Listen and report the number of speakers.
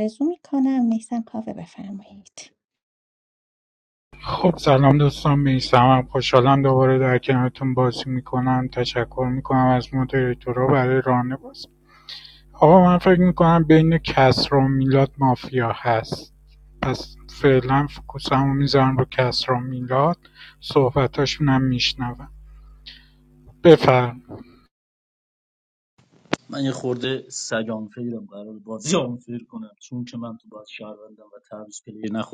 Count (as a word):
three